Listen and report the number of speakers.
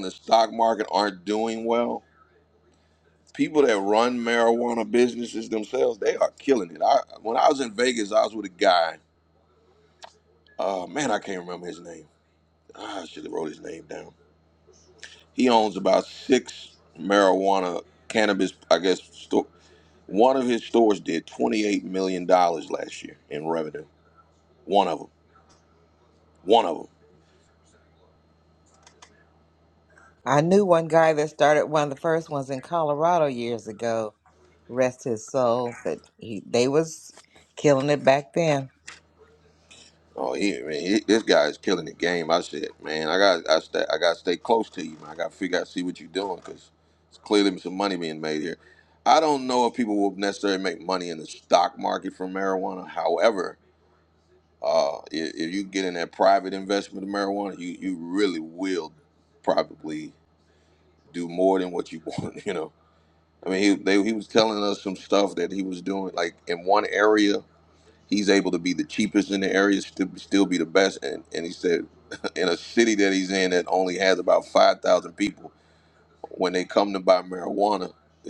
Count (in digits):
2